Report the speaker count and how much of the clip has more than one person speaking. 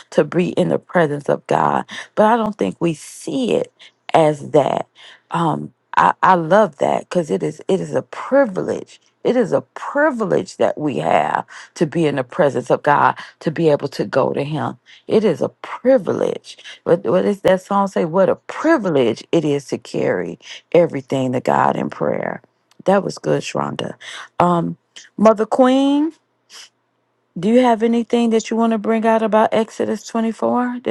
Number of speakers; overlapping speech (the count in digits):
1, no overlap